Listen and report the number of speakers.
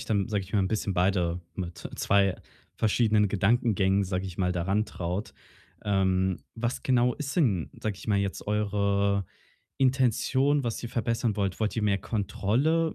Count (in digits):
1